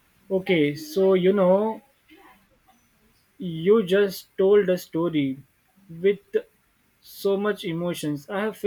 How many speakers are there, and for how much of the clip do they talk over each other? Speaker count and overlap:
one, no overlap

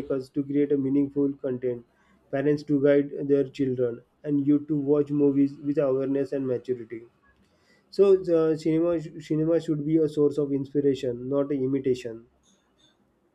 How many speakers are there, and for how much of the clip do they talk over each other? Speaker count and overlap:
one, no overlap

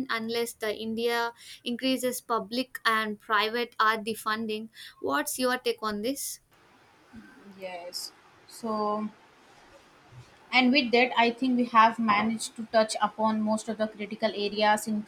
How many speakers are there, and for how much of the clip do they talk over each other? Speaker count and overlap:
two, no overlap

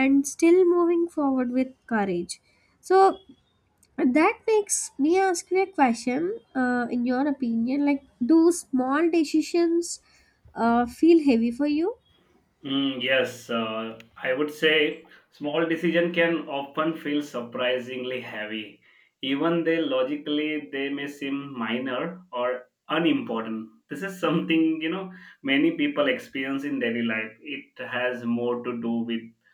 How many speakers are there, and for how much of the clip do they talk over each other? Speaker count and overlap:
two, no overlap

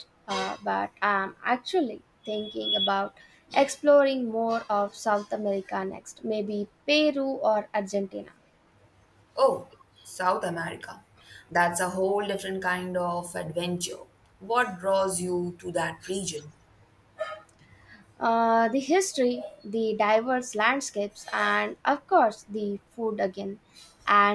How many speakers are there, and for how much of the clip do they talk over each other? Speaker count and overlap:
two, no overlap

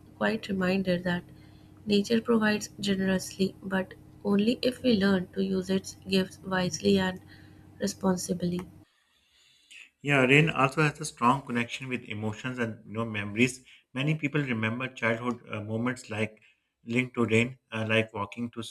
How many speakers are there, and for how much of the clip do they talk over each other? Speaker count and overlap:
two, no overlap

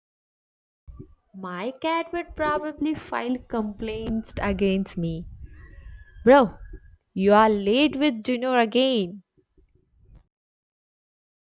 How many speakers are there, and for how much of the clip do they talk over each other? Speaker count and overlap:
one, no overlap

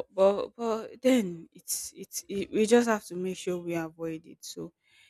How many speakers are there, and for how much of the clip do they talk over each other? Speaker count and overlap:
one, no overlap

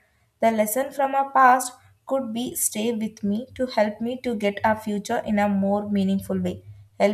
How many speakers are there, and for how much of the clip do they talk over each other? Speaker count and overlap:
one, no overlap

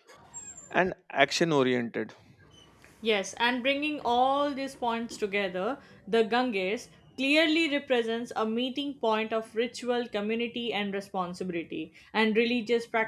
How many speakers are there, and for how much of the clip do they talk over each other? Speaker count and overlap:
two, no overlap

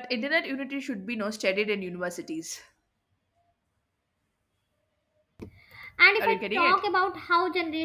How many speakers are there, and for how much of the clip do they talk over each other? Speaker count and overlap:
two, about 9%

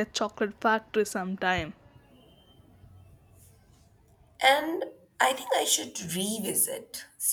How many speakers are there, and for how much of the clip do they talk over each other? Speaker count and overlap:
two, no overlap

